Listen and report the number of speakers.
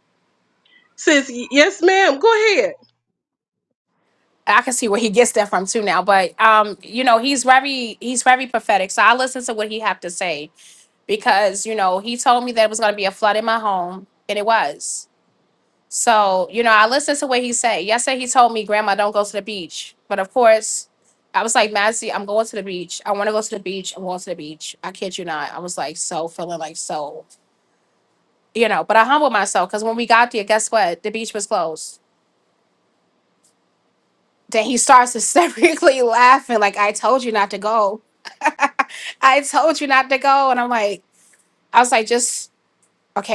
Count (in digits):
2